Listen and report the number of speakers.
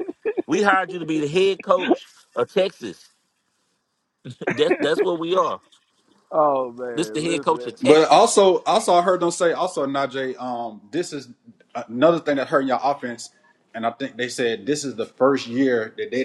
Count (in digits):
3